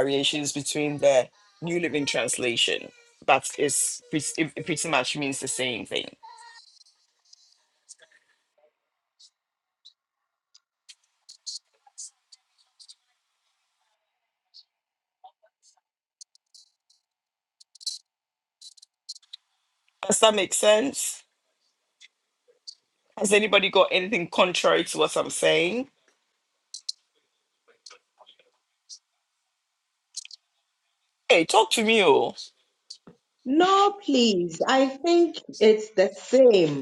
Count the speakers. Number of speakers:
two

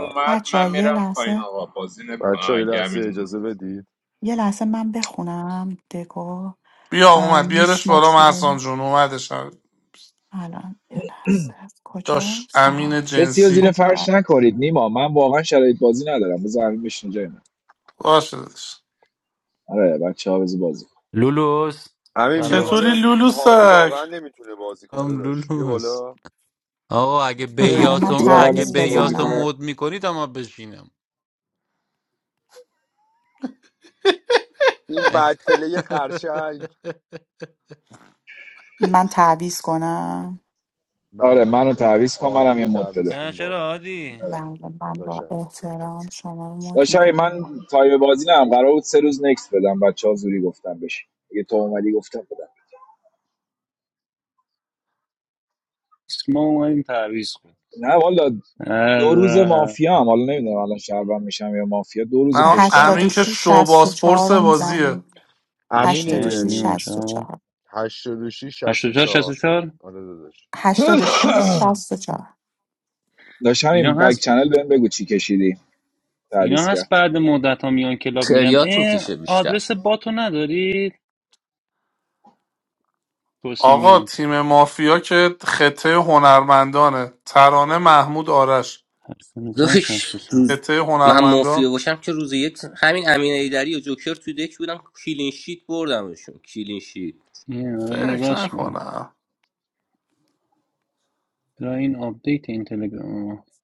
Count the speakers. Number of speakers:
seven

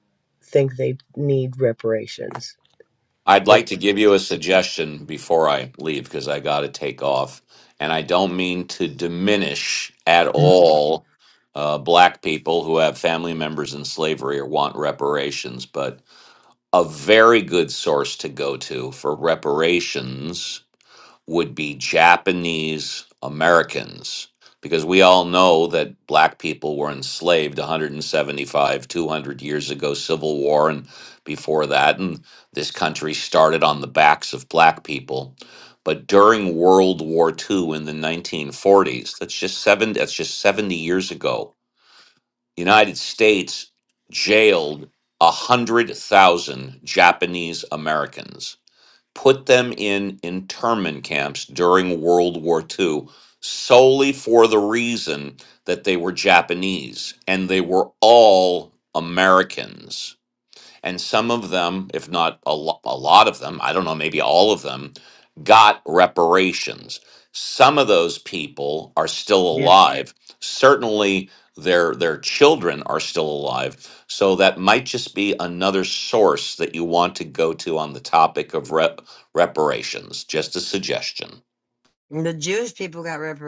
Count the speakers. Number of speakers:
three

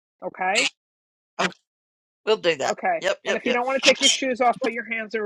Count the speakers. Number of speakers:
two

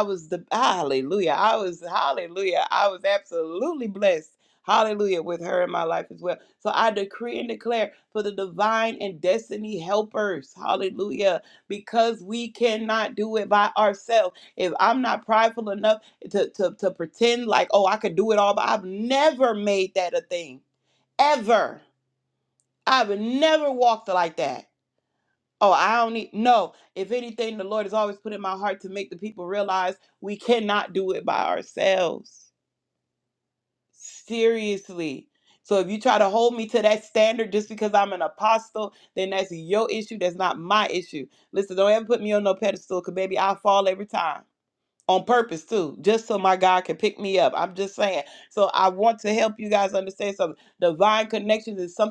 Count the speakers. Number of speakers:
one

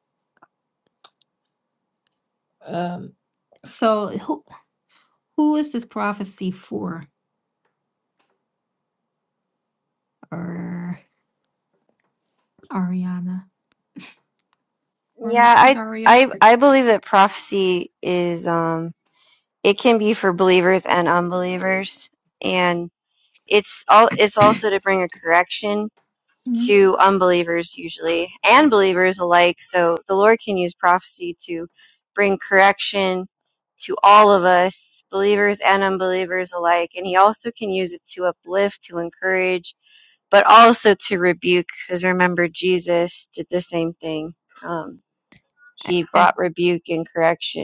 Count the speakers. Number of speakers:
two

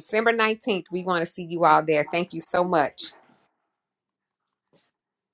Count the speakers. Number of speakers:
one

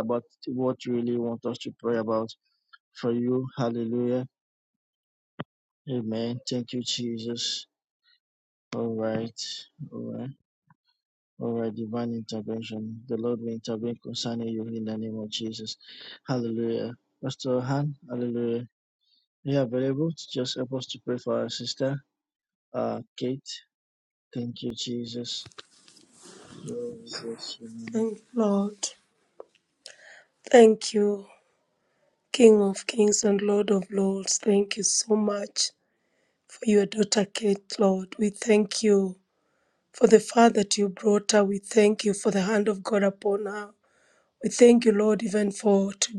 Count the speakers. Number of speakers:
two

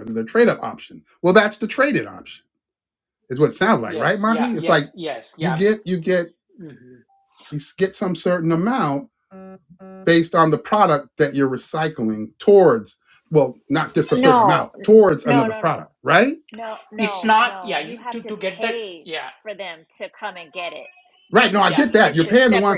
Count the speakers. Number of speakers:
three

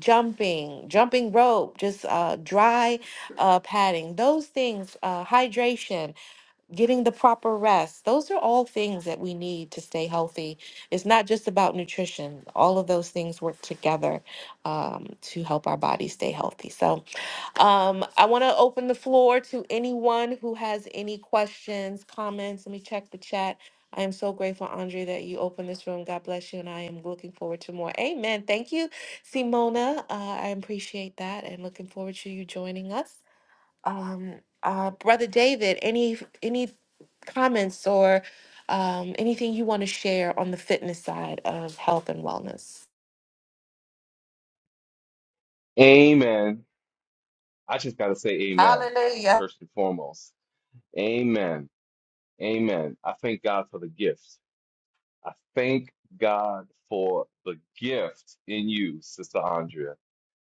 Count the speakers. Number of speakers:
two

